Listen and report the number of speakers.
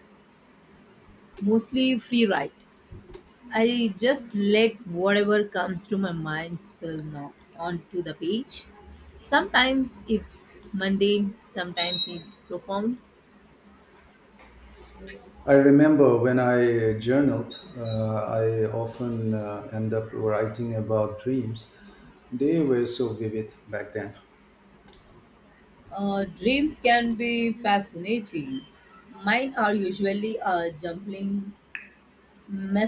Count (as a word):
two